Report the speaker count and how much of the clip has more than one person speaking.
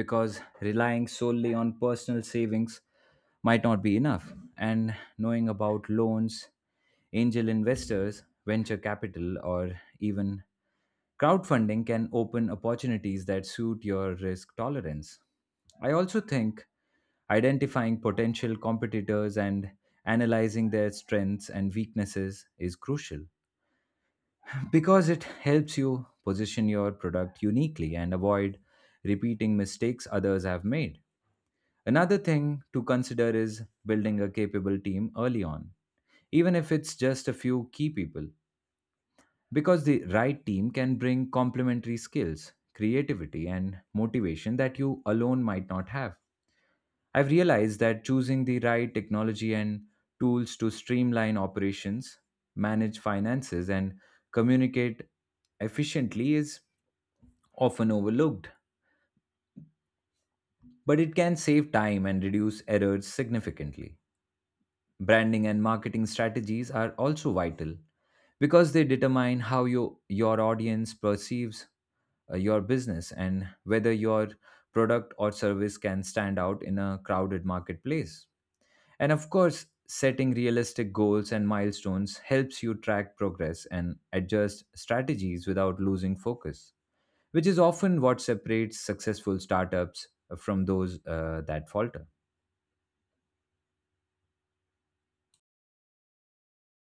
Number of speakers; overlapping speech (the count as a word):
one, no overlap